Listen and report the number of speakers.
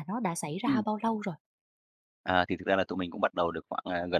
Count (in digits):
2